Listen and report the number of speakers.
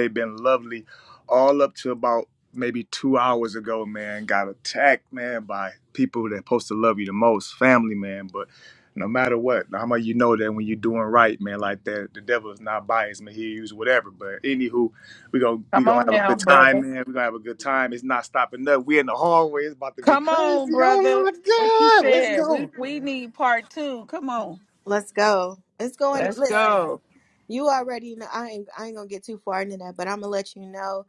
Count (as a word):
three